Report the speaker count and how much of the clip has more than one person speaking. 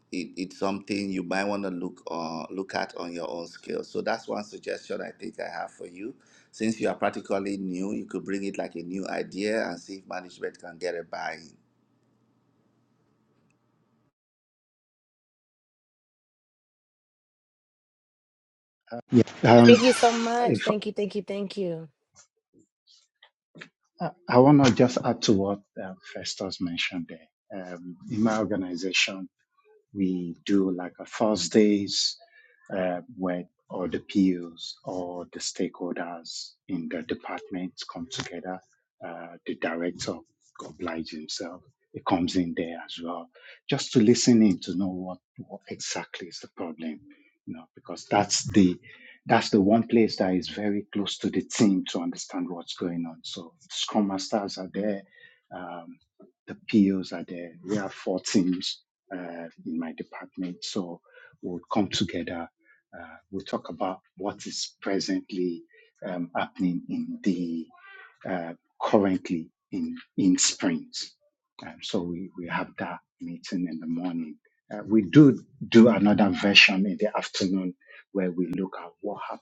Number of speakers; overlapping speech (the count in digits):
3, about 1%